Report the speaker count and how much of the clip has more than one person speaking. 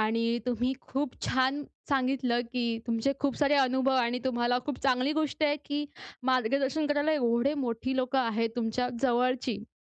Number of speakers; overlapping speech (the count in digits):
1, no overlap